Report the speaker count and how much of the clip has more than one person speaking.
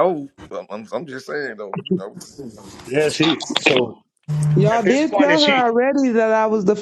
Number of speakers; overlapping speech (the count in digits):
3, about 14%